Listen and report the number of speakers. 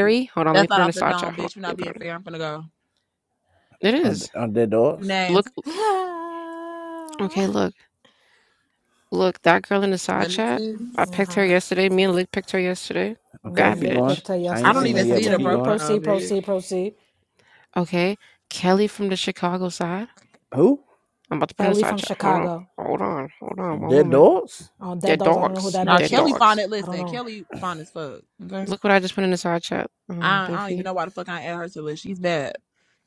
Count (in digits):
4